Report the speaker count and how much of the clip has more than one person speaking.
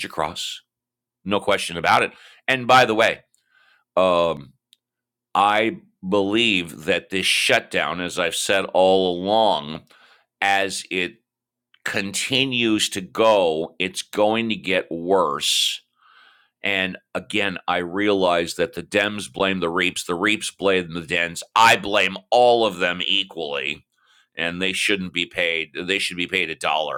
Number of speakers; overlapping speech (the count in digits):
1, no overlap